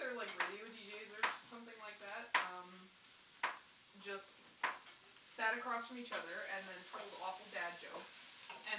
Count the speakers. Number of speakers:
one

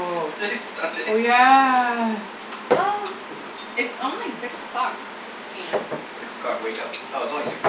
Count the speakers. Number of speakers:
three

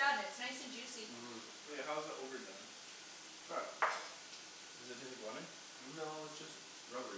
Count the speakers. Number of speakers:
three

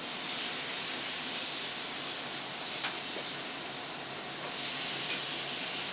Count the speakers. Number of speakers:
zero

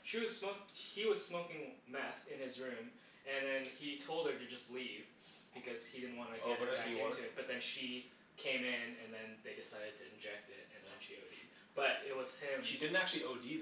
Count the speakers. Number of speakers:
two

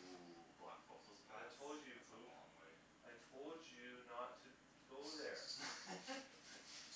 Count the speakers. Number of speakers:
two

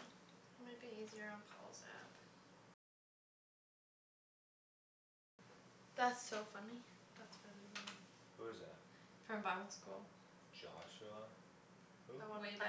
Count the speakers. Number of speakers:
three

